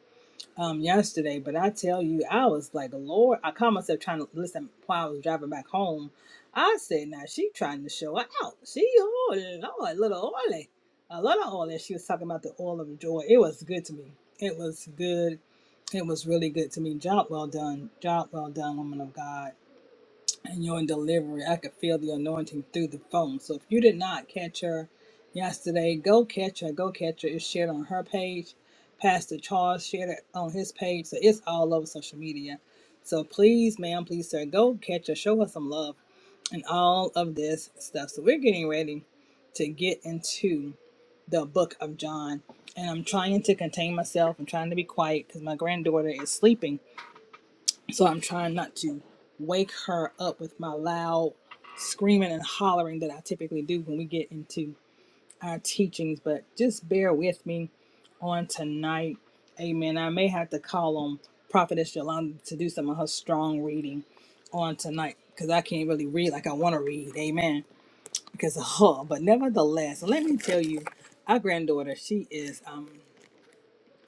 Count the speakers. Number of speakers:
1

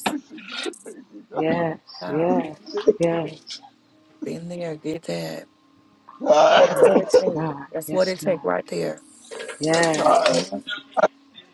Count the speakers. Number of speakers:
3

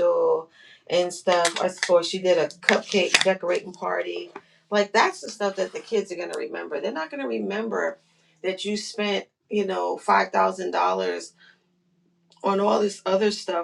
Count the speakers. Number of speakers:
1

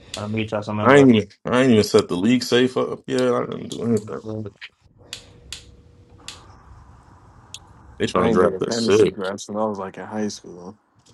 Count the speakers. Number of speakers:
3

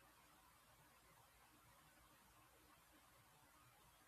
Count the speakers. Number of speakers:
0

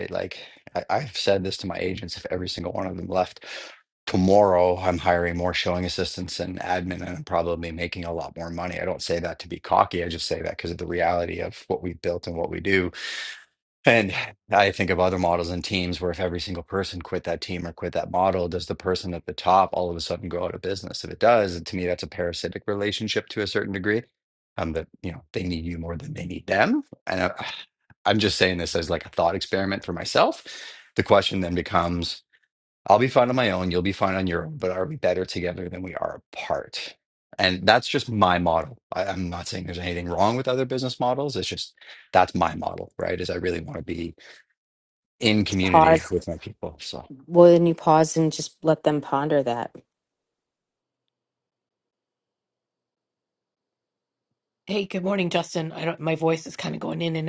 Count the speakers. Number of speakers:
3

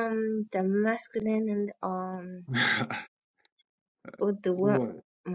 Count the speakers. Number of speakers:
2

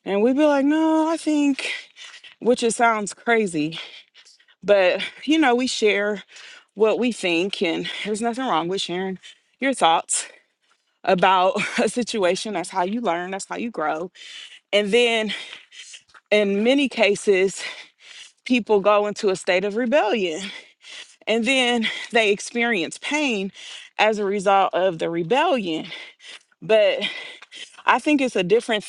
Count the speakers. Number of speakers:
1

